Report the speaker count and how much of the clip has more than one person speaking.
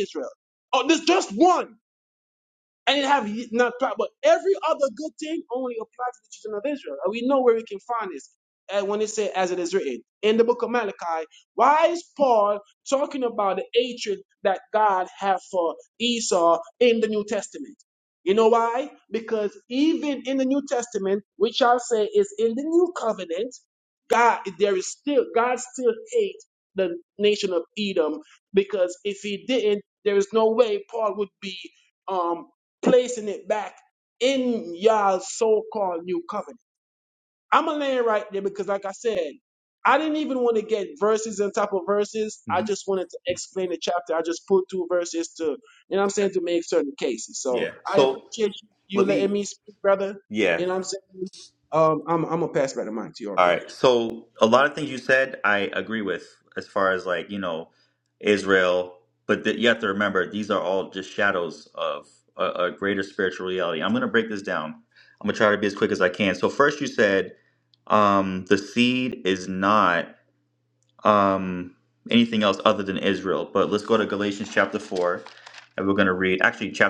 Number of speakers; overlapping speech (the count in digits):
2, about 2%